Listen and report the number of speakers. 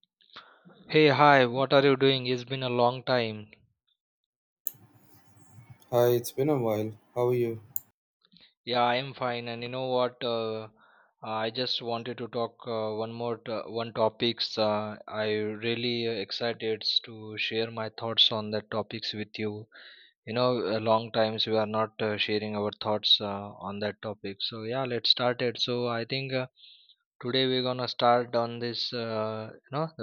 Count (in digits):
2